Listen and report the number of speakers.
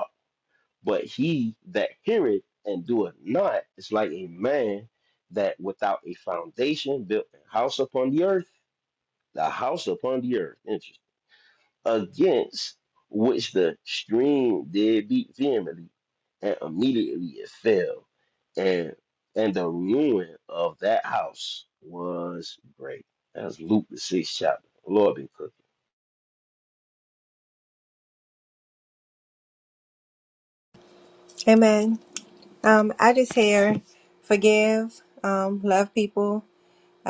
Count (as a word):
two